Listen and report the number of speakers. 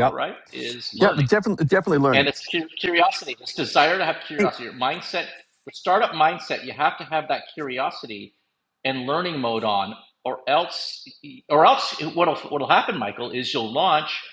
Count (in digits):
2